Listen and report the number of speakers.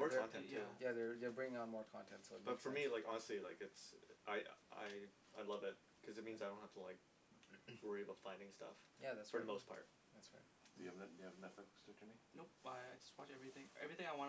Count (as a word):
four